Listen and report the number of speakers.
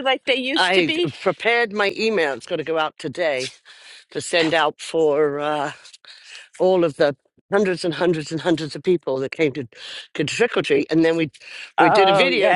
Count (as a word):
two